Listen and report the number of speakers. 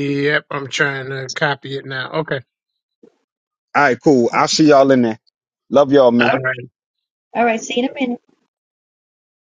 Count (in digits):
3